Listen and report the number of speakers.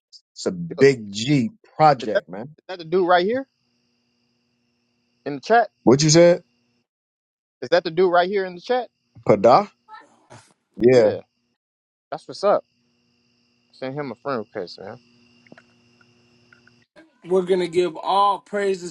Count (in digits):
3